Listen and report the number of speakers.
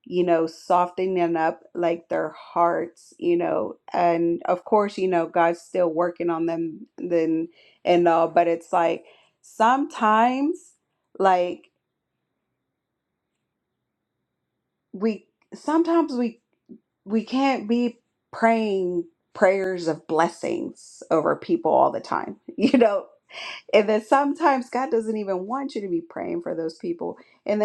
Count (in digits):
1